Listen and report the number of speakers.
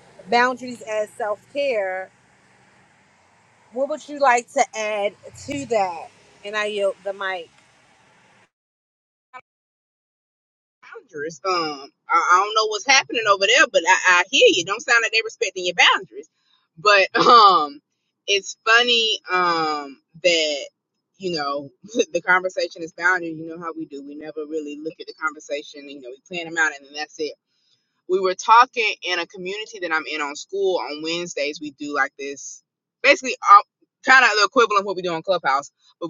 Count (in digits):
2